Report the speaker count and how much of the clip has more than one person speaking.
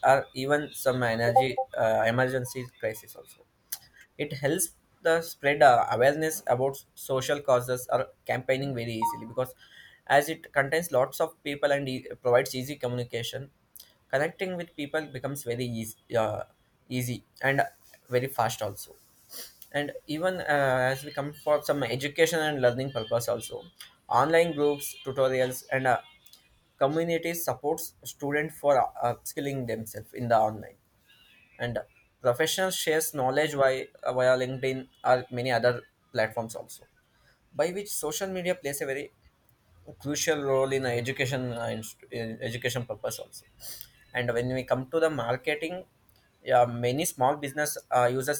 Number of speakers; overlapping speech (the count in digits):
1, no overlap